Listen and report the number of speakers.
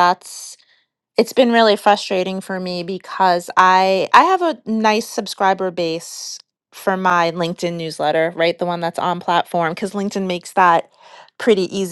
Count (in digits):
1